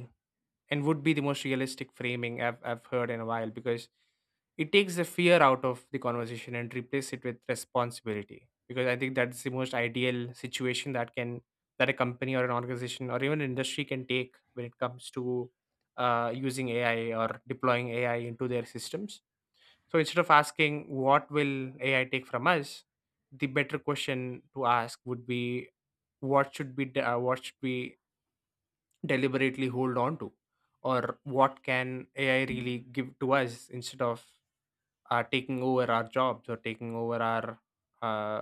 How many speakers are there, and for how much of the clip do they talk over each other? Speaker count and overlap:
one, no overlap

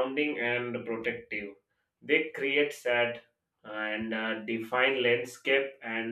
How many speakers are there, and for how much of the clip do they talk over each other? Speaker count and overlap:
one, no overlap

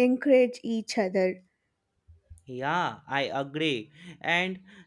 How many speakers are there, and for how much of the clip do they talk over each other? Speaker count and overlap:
two, no overlap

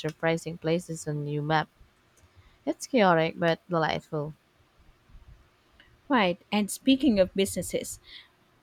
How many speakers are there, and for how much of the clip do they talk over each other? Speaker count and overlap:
two, no overlap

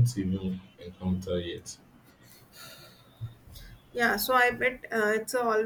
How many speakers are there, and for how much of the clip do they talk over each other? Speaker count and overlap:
two, no overlap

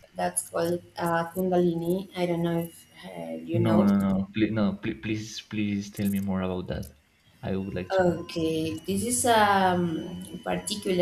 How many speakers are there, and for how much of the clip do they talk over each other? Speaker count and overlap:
two, about 6%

